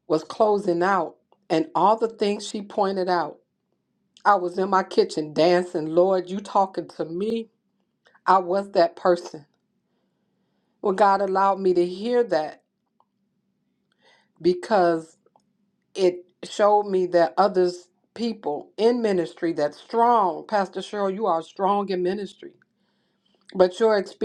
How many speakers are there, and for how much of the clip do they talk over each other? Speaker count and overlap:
1, no overlap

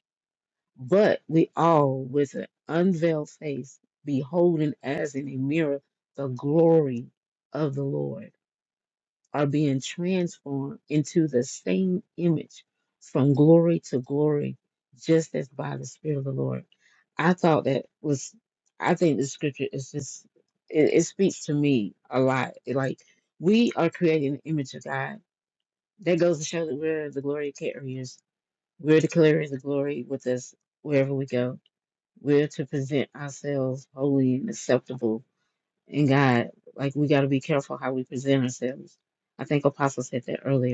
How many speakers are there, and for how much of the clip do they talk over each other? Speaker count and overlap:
1, no overlap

